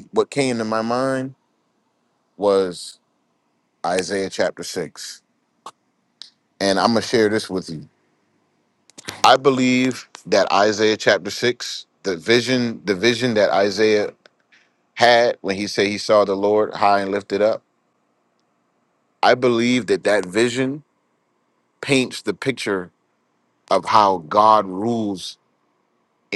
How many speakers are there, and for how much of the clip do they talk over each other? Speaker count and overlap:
1, no overlap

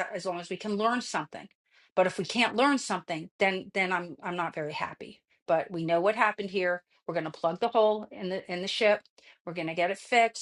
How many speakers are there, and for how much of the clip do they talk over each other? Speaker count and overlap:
1, no overlap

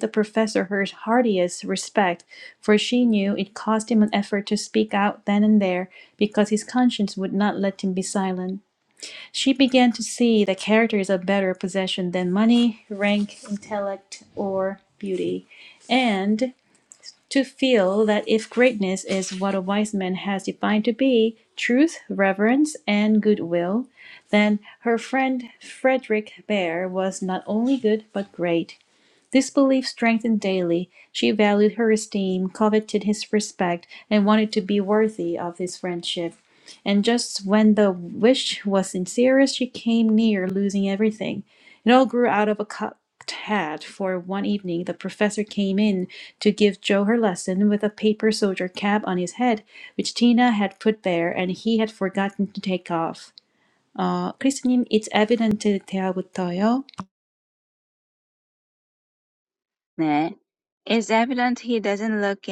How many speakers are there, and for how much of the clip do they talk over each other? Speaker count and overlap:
2, no overlap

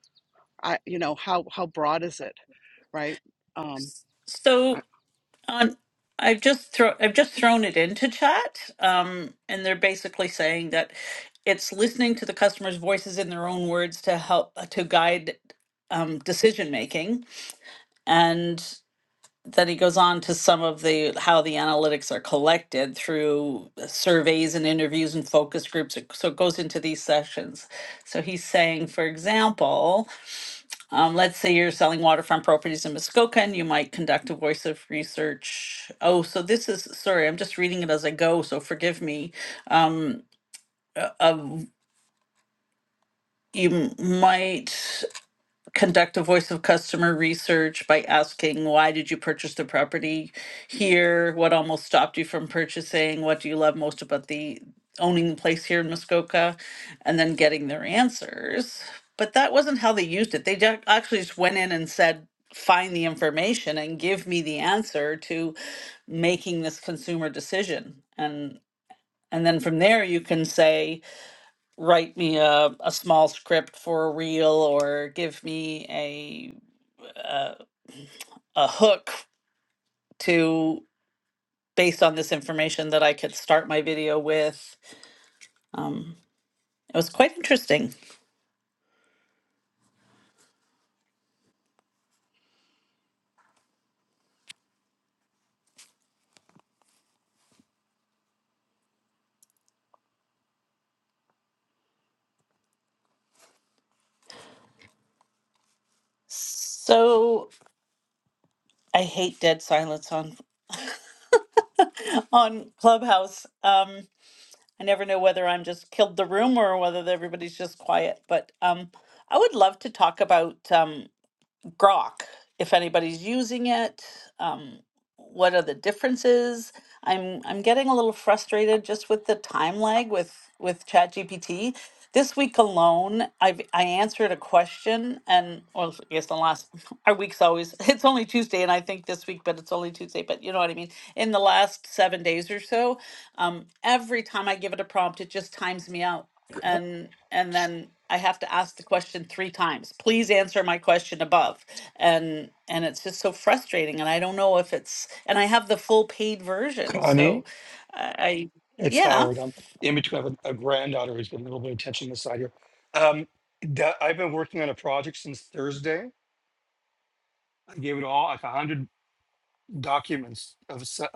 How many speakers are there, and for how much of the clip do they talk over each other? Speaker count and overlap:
3, about 1%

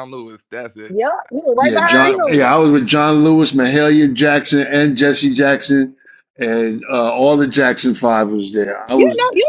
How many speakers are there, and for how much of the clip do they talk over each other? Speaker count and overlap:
3, about 15%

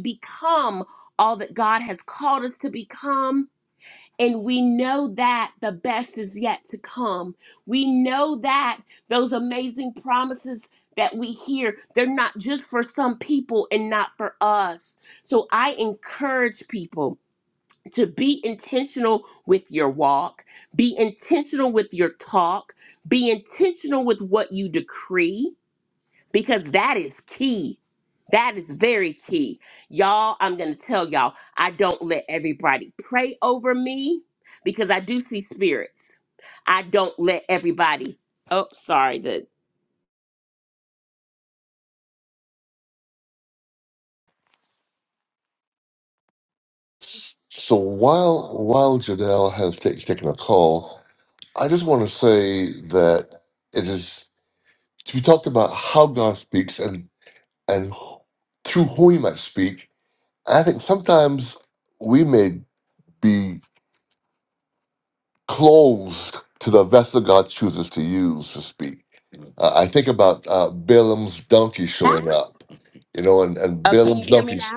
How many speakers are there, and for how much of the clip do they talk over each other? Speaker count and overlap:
2, about 1%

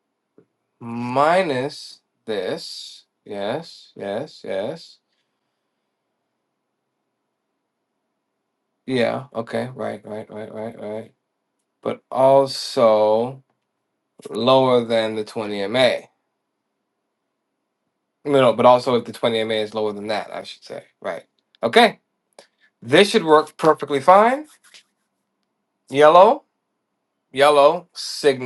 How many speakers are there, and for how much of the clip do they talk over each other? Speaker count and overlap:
1, no overlap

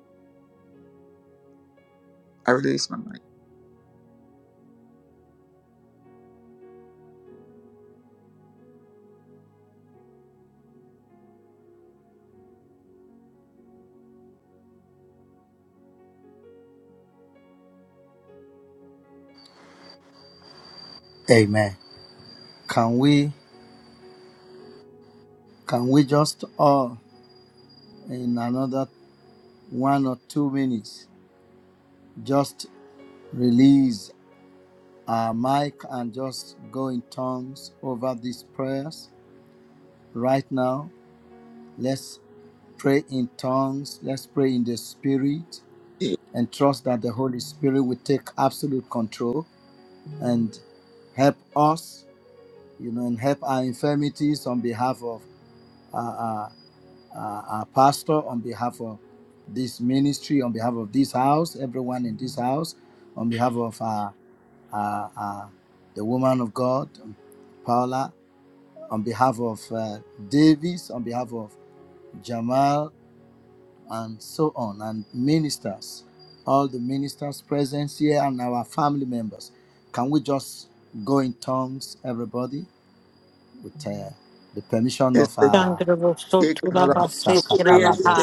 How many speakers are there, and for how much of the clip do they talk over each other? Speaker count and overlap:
3, about 2%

